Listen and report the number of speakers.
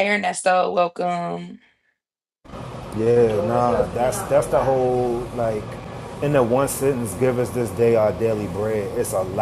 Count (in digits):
2